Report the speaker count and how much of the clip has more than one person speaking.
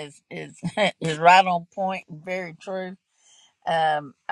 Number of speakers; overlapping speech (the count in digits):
1, no overlap